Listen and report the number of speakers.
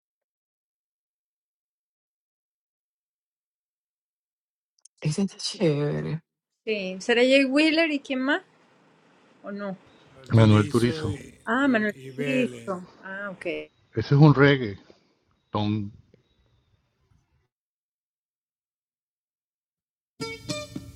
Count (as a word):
three